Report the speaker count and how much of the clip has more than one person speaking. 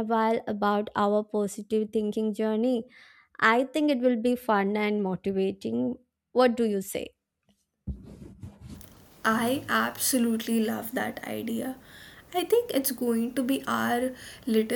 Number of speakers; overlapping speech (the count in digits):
2, no overlap